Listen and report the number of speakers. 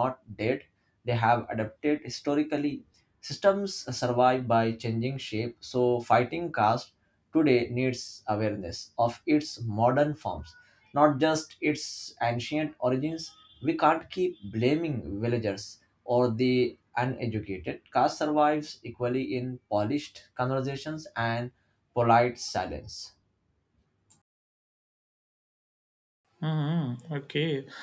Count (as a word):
two